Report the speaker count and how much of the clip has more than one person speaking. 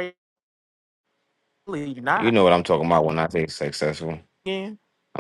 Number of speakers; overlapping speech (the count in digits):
2, about 3%